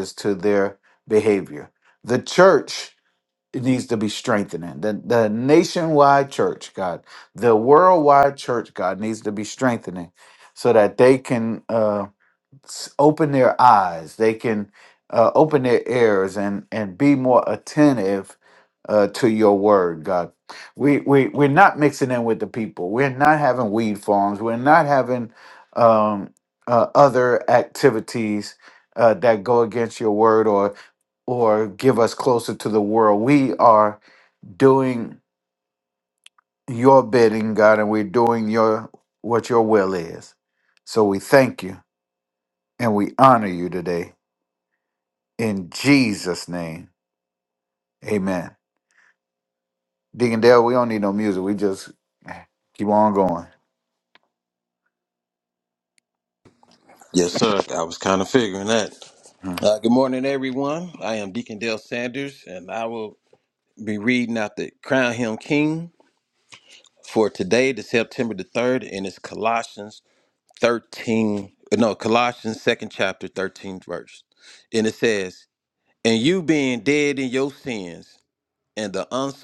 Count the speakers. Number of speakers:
2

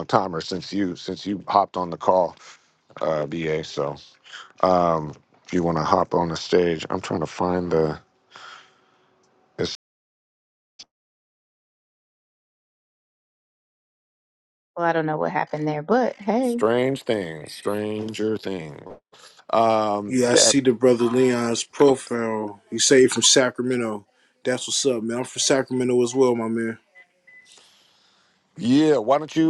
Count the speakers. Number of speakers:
3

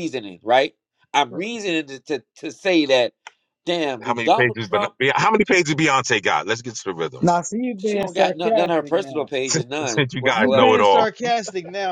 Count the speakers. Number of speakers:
3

